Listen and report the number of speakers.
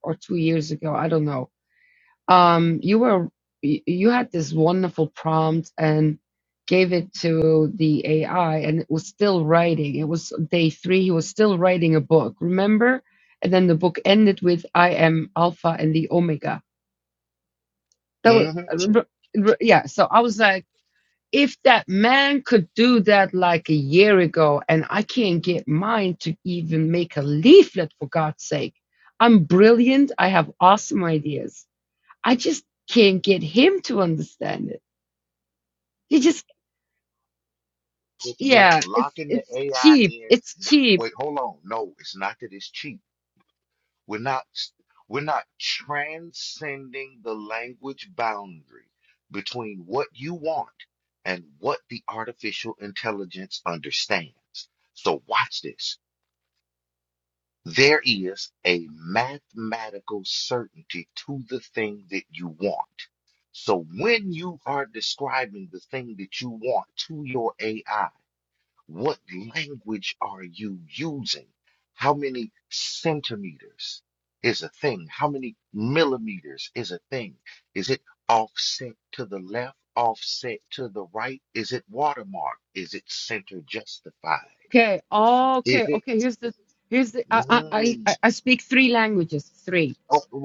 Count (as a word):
two